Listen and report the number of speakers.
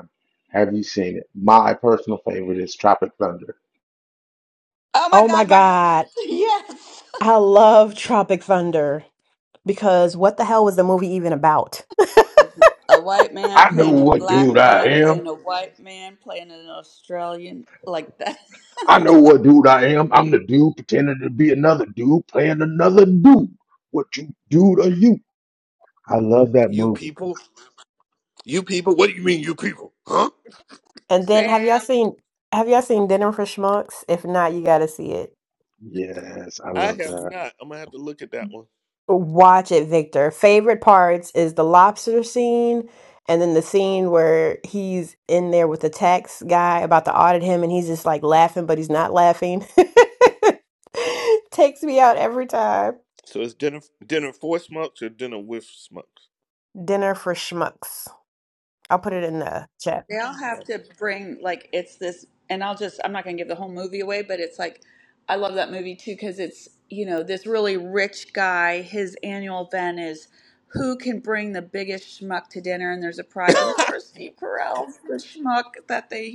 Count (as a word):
four